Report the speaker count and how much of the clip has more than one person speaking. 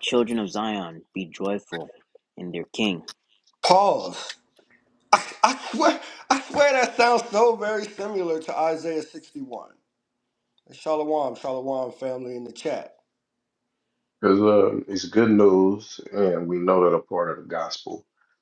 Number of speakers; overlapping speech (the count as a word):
three, no overlap